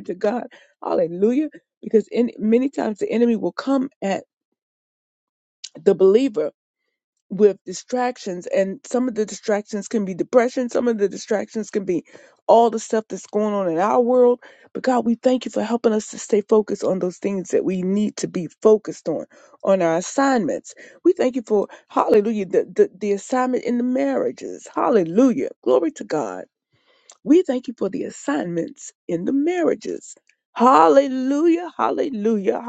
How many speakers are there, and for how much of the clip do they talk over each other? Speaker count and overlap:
1, no overlap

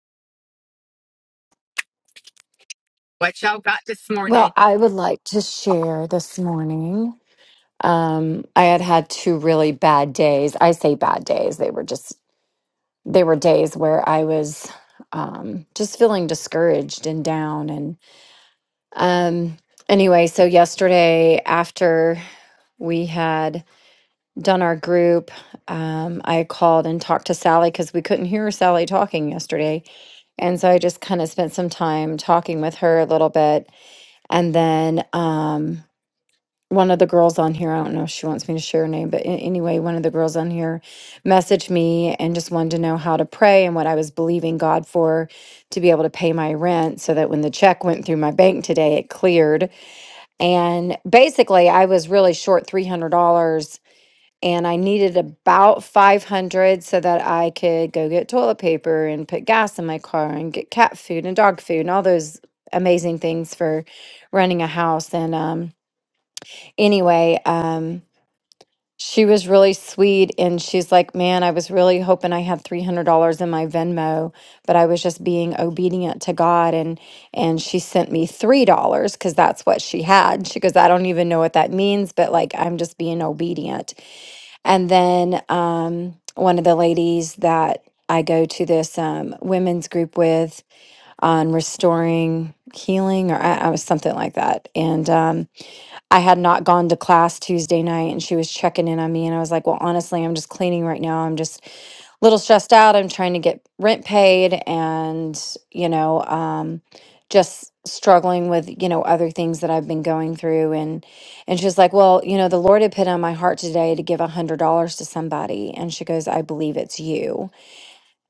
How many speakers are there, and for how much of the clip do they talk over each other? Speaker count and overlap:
2, under 1%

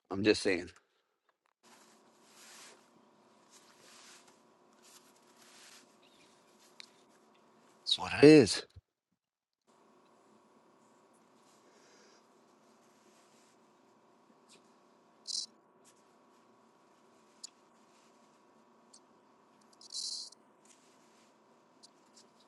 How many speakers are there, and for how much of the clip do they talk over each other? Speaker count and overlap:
1, no overlap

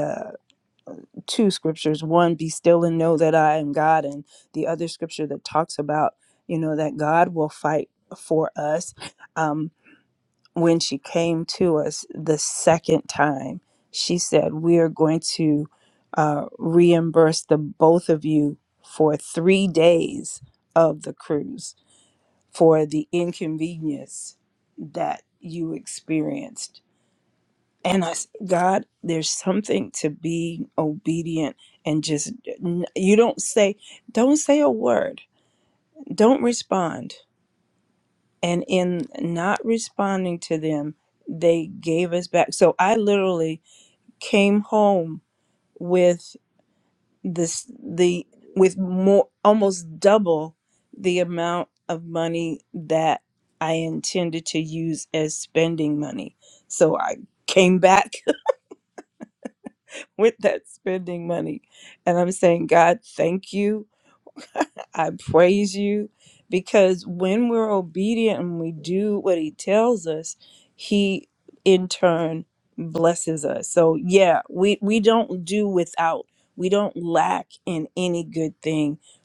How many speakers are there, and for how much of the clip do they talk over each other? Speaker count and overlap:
1, no overlap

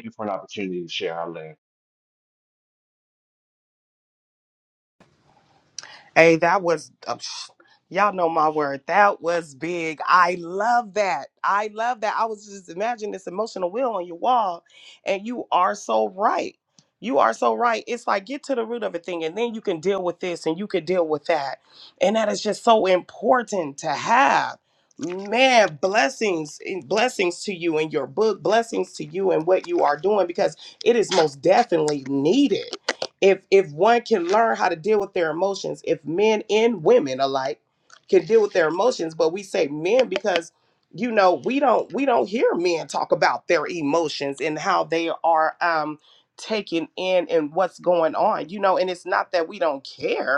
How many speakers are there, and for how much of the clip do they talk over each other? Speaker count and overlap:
2, no overlap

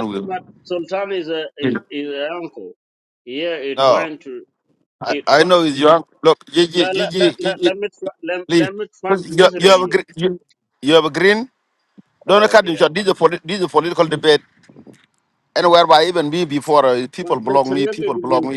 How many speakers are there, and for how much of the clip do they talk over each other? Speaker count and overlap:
2, about 27%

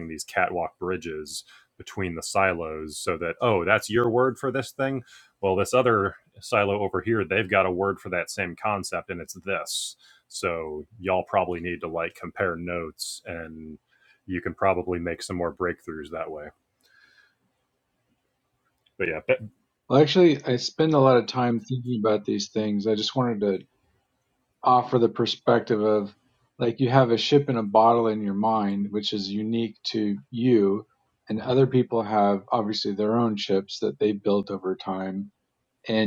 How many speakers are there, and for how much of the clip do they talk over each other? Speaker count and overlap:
2, no overlap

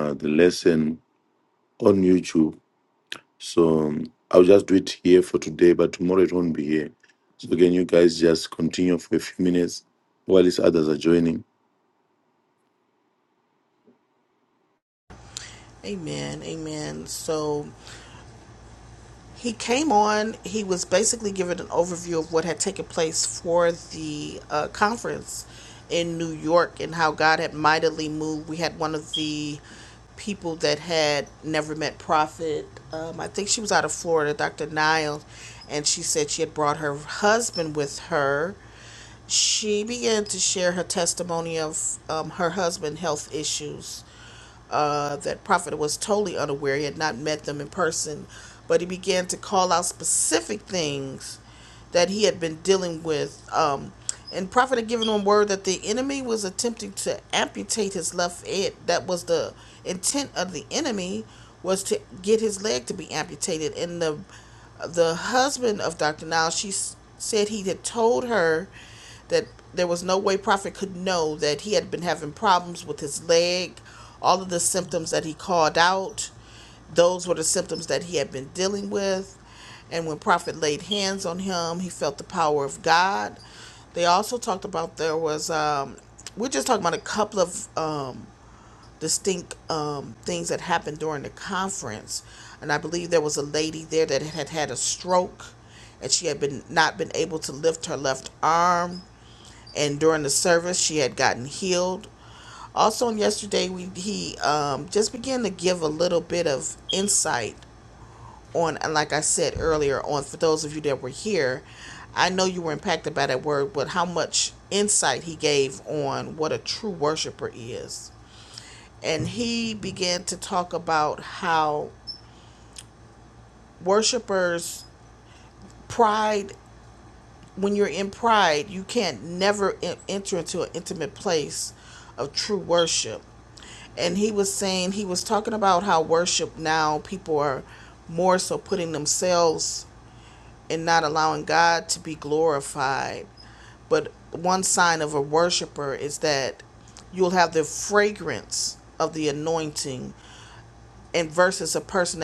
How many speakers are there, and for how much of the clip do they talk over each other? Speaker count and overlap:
2, no overlap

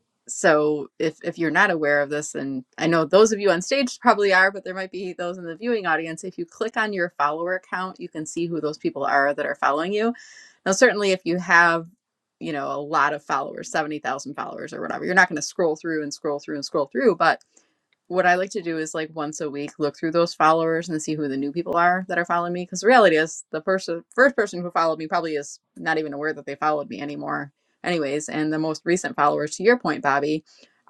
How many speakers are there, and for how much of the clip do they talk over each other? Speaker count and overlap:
1, no overlap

